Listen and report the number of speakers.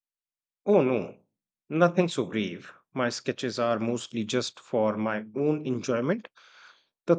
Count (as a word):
one